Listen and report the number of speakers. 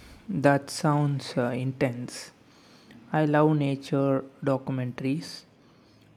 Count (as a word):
one